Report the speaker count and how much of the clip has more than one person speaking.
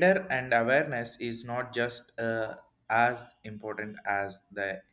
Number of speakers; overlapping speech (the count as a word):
one, no overlap